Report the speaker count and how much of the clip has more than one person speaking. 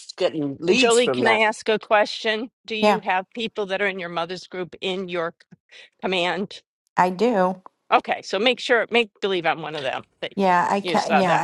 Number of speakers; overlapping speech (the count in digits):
3, about 13%